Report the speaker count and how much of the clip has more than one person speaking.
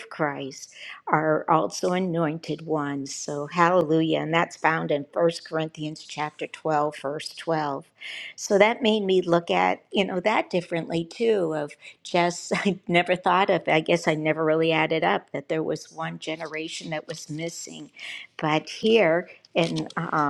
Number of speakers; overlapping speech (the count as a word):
one, no overlap